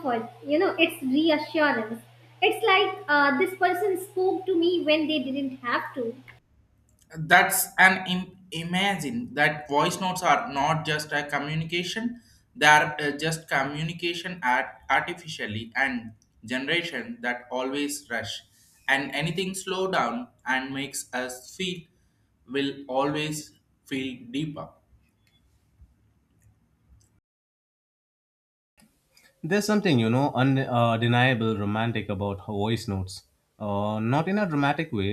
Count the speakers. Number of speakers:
3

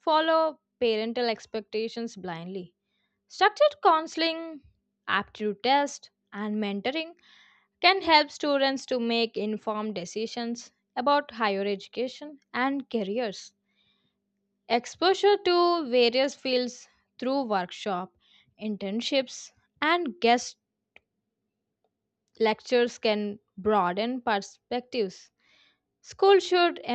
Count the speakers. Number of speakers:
1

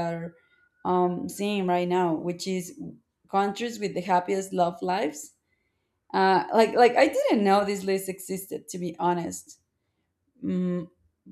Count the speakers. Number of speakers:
1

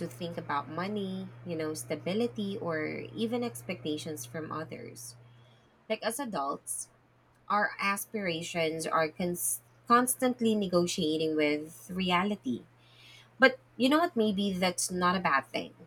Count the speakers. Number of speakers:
1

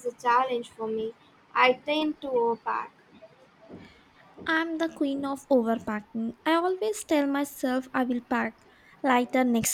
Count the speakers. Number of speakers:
2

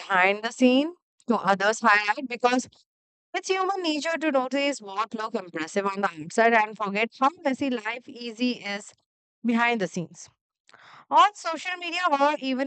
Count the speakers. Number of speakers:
1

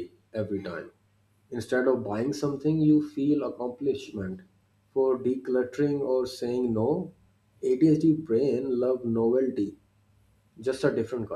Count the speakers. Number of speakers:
1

